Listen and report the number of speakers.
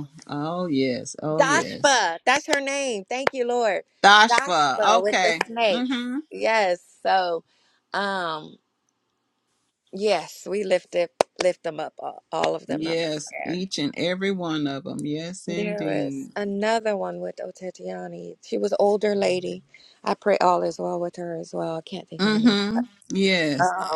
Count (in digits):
2